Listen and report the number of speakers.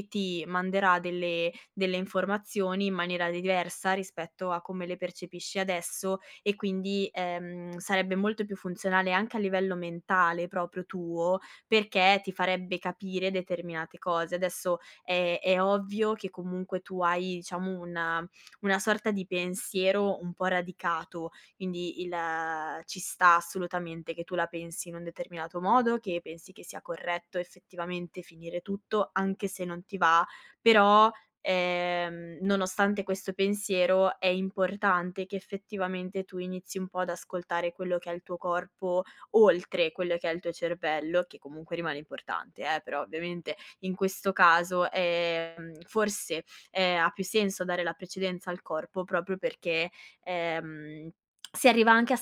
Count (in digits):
1